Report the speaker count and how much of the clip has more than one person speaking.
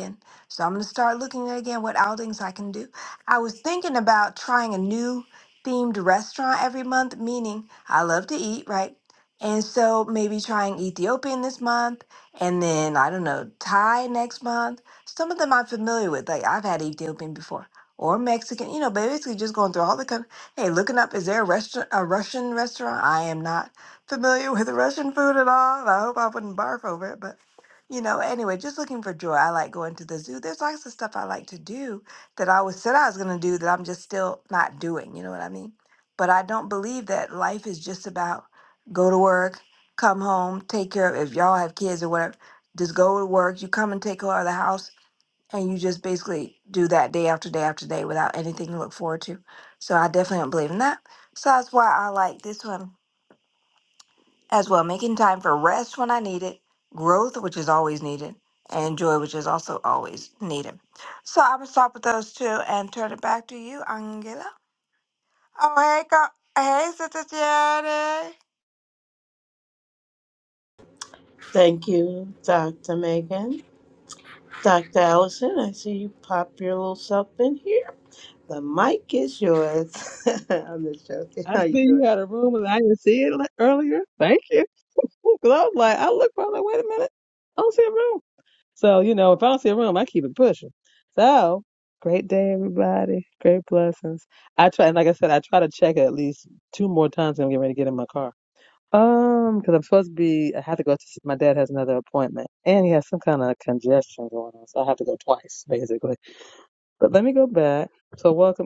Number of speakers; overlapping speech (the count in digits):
3, about 1%